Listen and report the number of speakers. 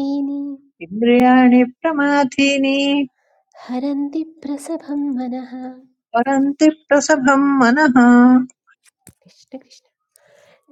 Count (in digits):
2